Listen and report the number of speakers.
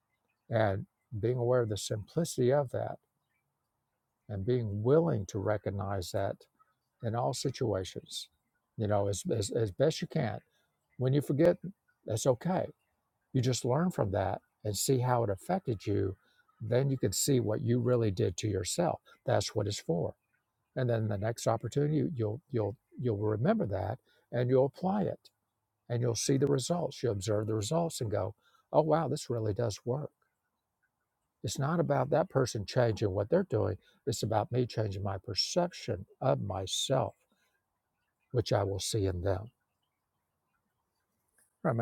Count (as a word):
one